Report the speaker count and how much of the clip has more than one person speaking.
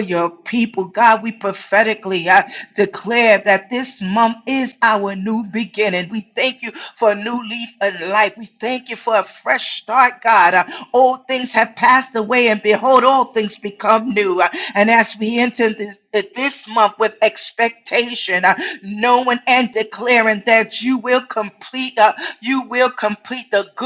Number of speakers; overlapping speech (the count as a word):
one, no overlap